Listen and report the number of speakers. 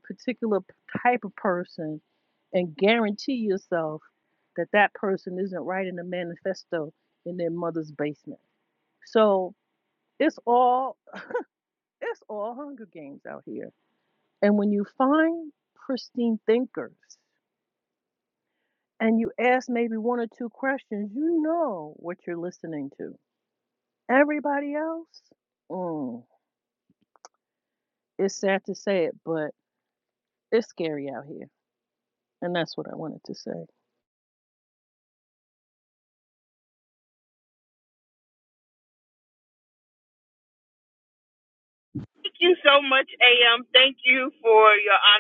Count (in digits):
2